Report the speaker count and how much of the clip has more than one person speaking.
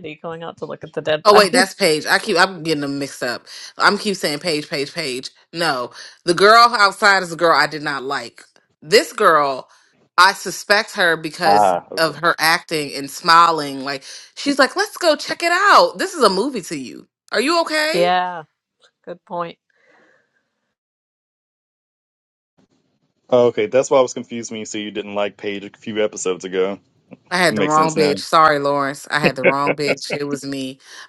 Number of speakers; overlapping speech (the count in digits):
3, about 5%